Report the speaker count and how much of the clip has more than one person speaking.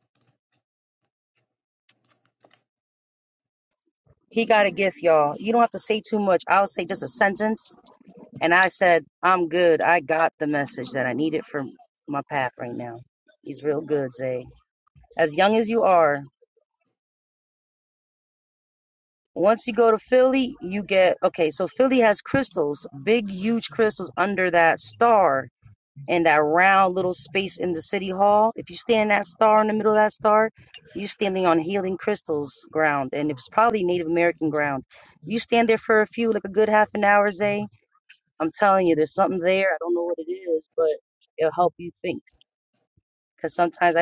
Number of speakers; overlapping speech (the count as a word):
one, no overlap